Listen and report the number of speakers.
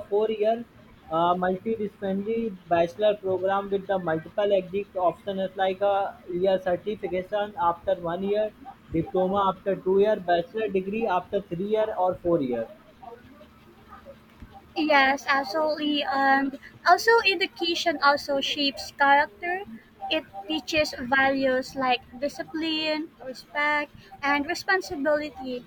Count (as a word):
two